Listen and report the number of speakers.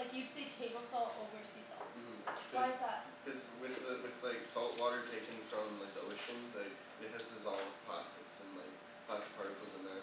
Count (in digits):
2